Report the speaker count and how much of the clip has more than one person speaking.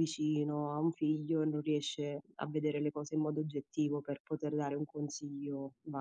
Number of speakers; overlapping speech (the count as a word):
one, no overlap